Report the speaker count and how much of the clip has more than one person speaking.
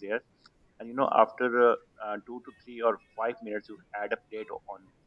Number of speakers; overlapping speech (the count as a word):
one, no overlap